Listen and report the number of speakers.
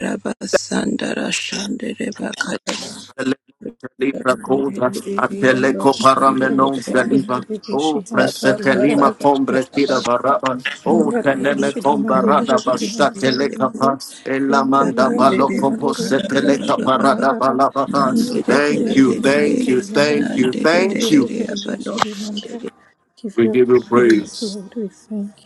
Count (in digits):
3